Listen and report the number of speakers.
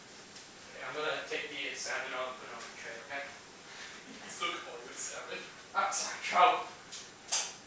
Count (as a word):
two